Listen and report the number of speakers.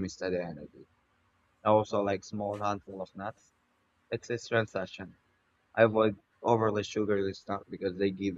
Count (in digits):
1